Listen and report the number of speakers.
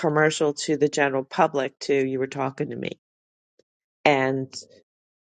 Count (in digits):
1